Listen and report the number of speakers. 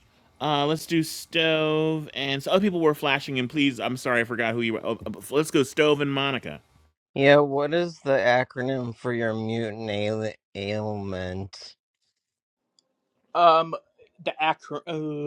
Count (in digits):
3